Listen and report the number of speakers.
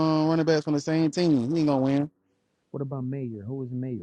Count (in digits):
2